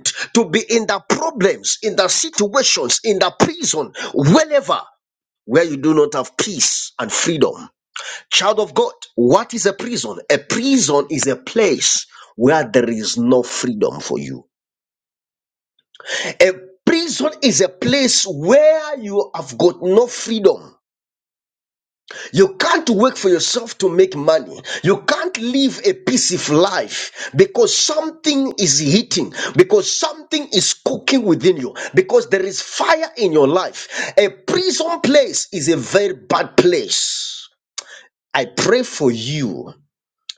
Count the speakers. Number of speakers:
1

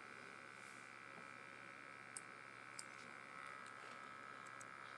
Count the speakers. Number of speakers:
0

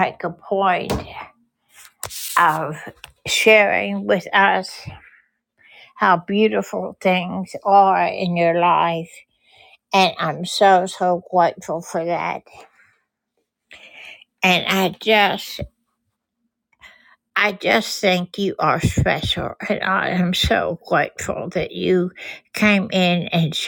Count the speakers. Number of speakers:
1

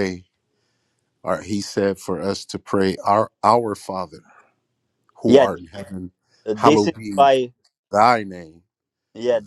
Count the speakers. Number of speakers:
2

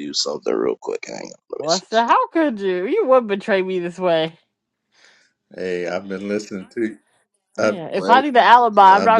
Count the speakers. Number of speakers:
3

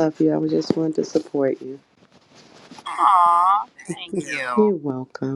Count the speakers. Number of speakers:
2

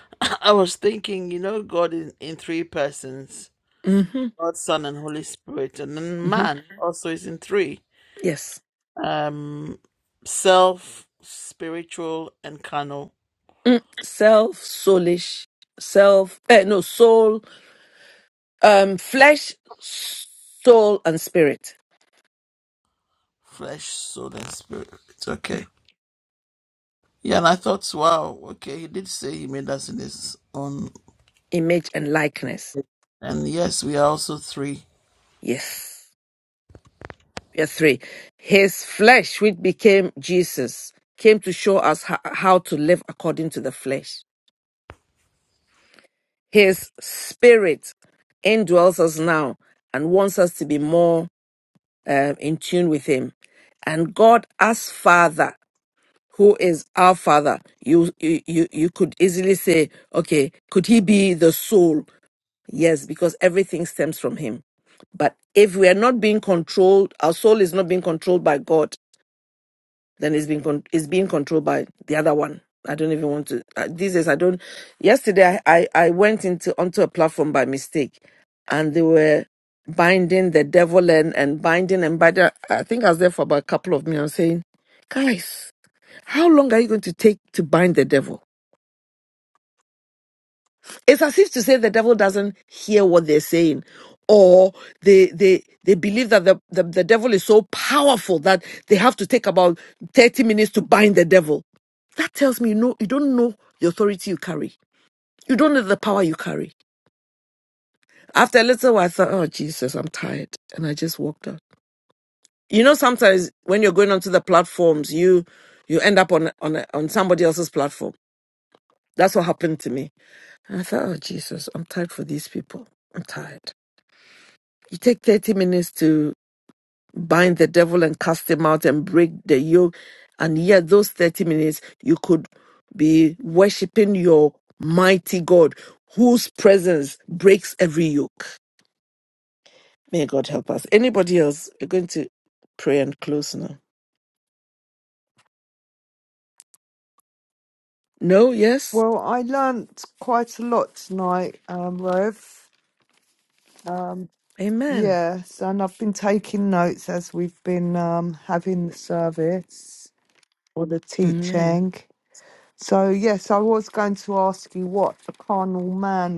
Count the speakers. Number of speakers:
3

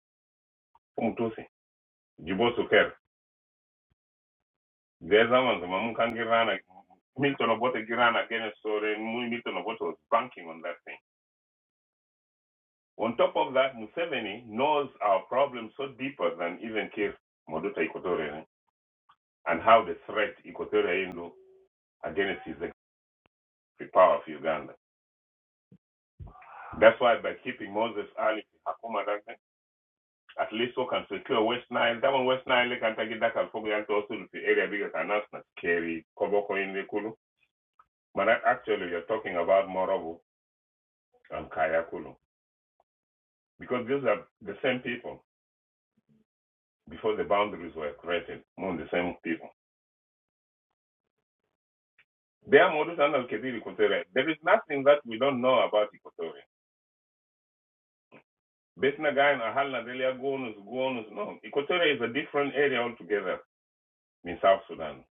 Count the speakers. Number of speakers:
1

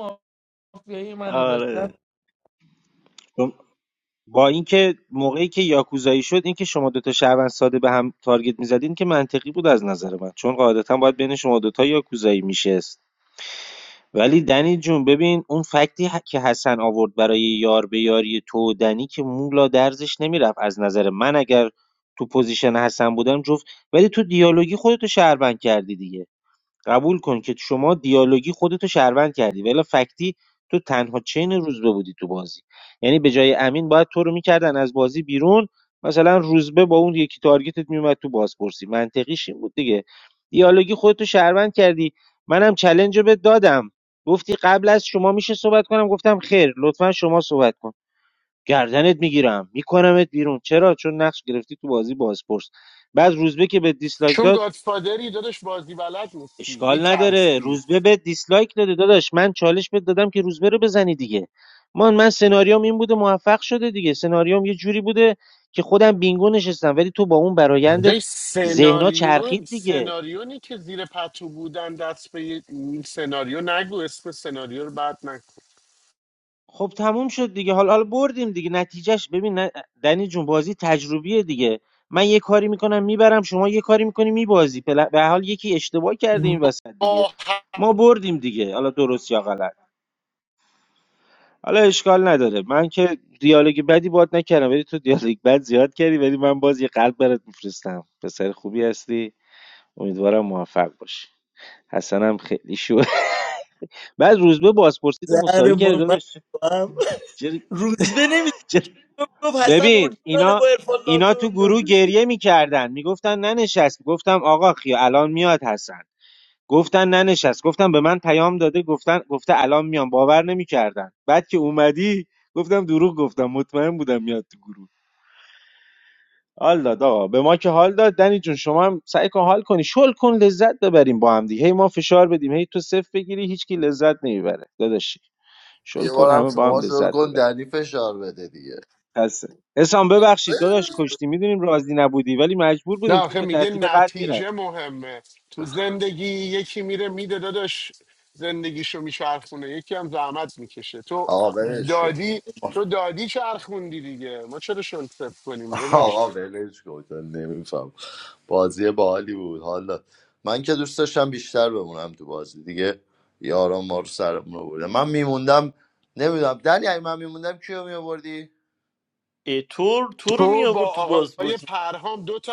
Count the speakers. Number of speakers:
5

